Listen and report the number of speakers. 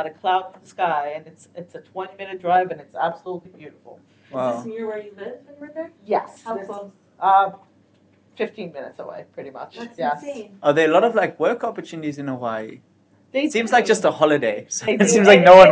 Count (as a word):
three